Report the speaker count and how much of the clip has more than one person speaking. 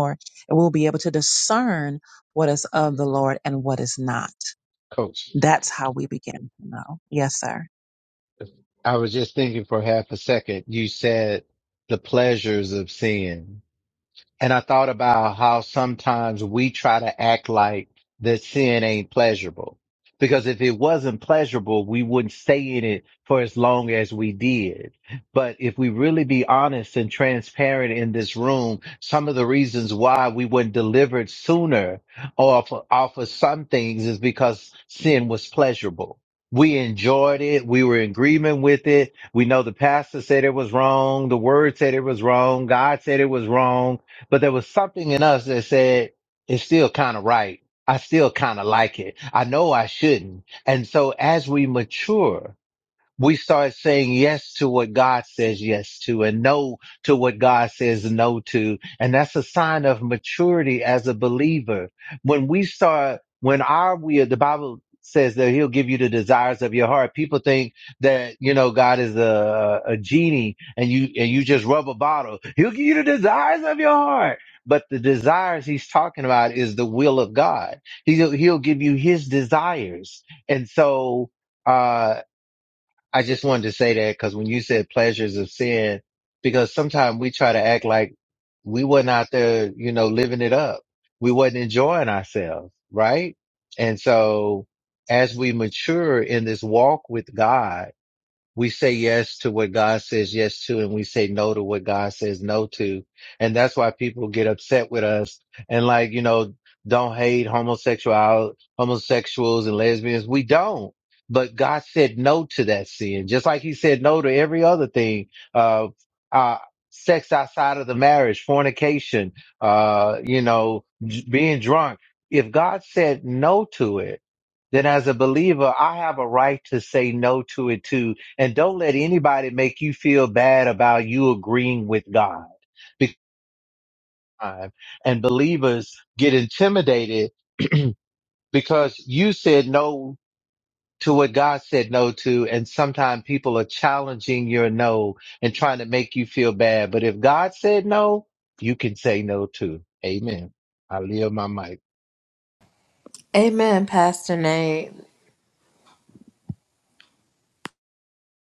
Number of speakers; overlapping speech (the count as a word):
three, no overlap